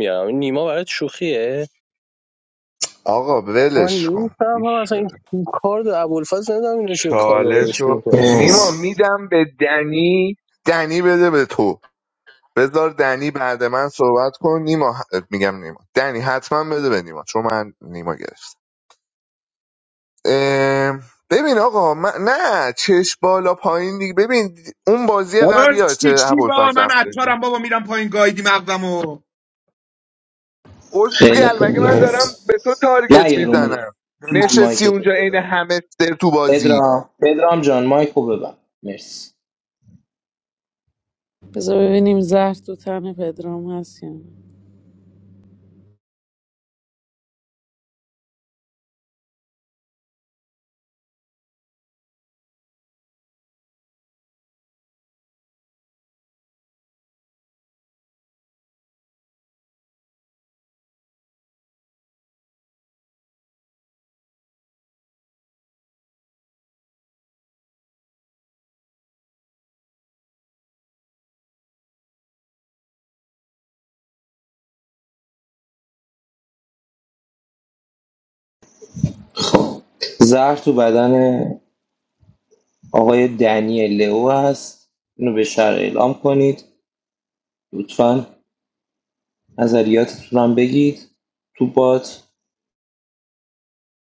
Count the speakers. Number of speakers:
five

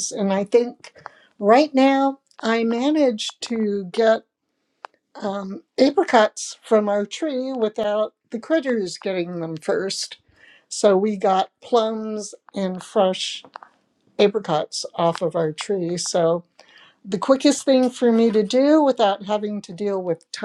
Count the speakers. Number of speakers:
one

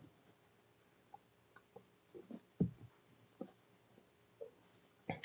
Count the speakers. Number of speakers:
zero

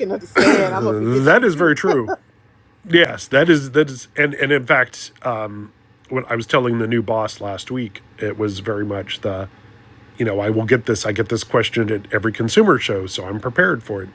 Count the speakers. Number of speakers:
two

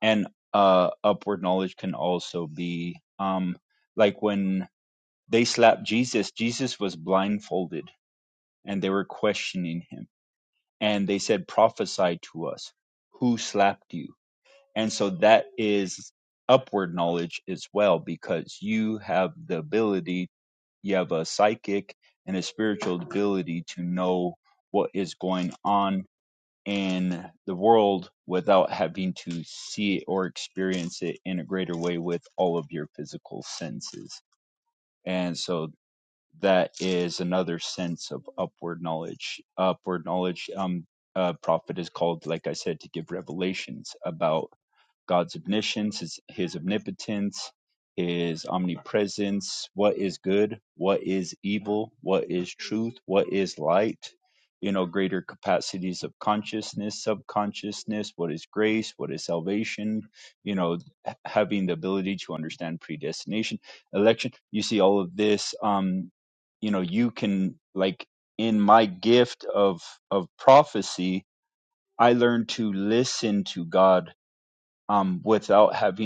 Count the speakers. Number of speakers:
one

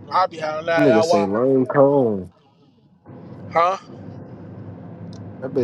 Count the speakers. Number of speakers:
two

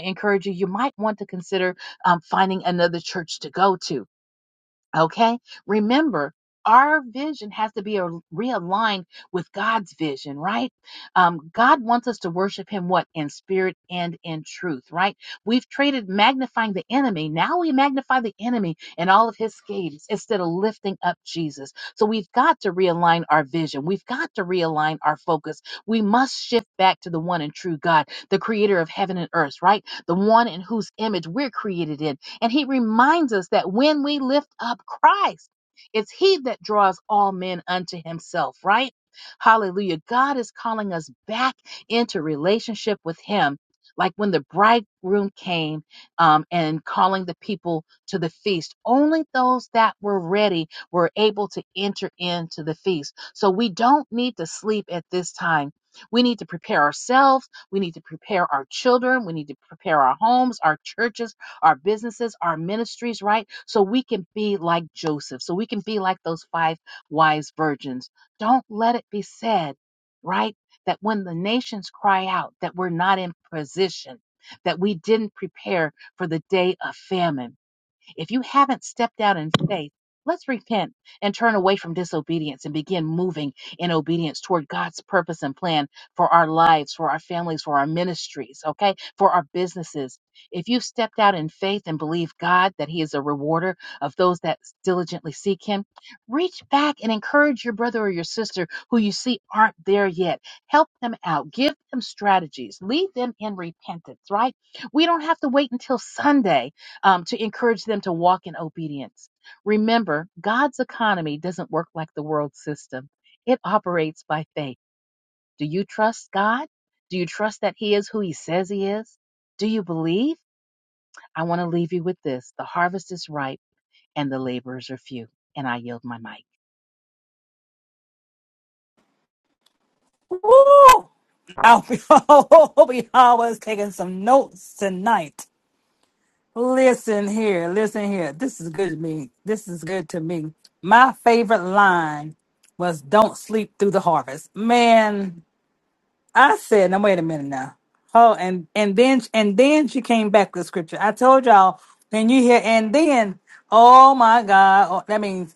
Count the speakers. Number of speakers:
two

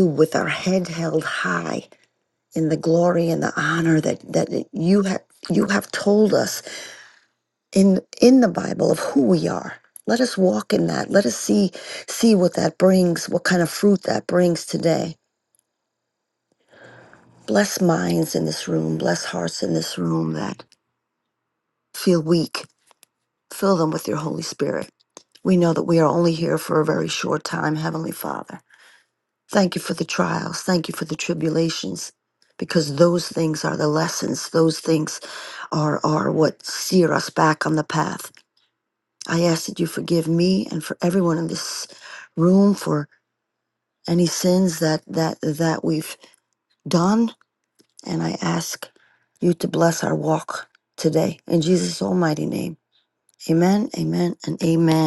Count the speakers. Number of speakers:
one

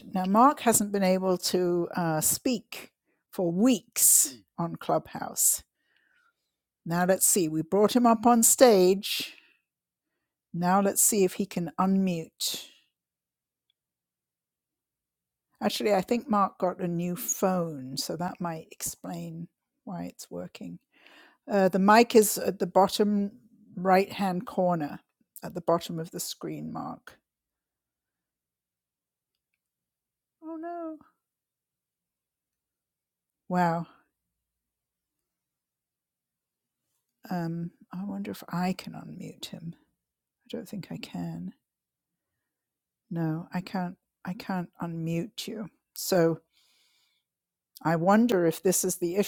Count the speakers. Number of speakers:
one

